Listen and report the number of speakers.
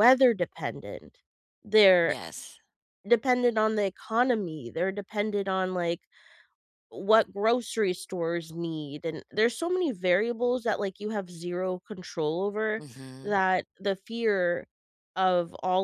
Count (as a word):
two